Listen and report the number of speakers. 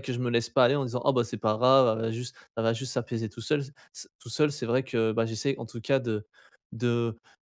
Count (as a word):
one